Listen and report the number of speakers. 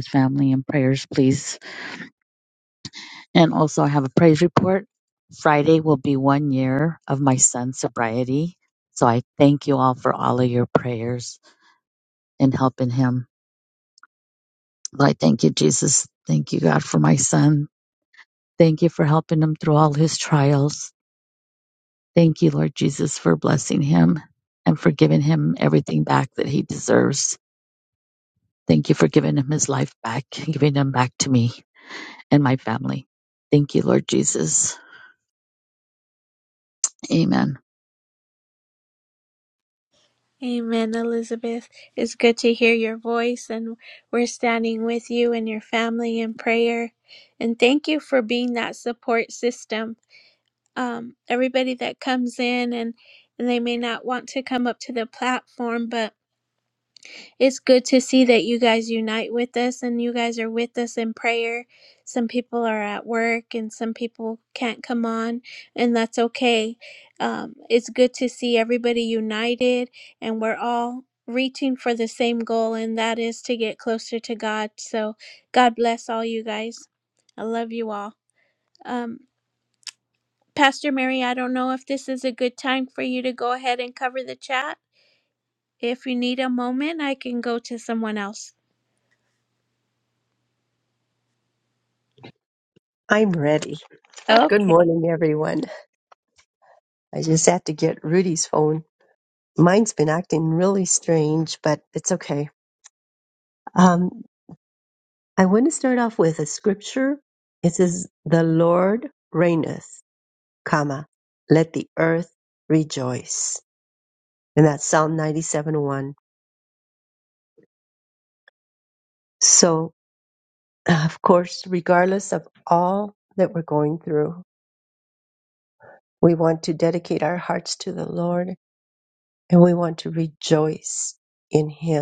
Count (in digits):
3